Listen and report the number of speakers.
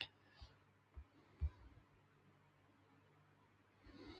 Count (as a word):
zero